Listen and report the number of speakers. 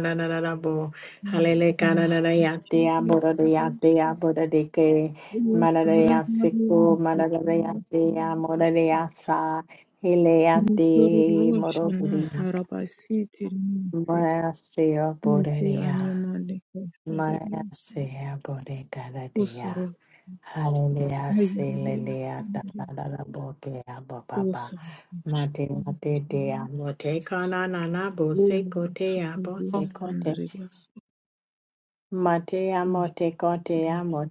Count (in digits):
2